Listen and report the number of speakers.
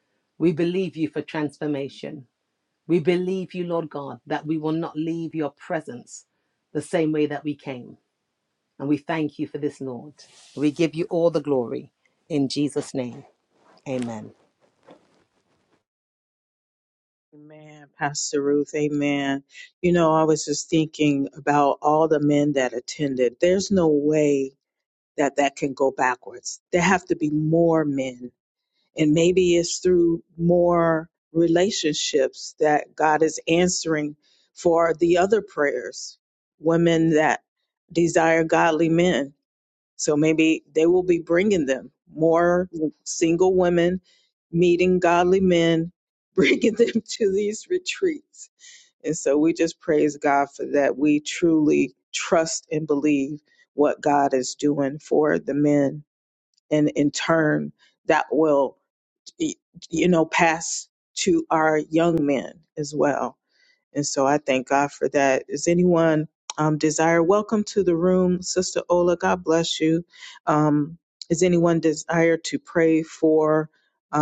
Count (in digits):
2